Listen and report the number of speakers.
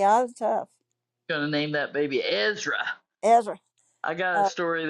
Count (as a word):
two